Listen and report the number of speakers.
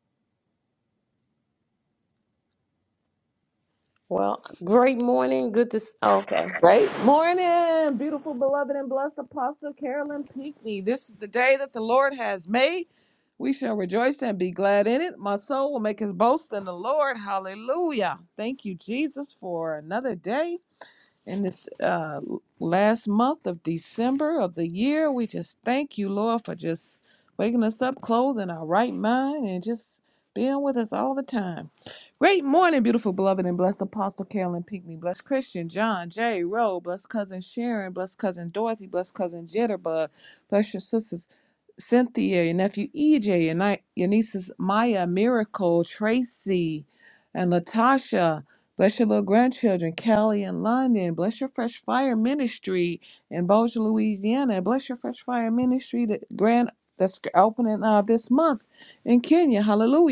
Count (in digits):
2